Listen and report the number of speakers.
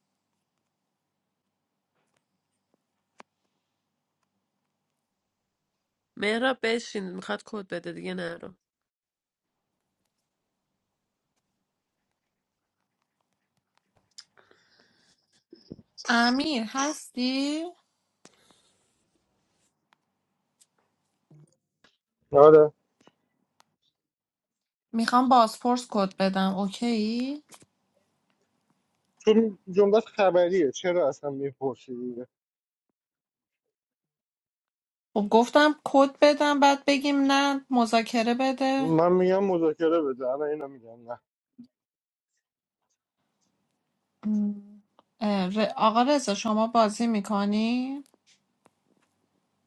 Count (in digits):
3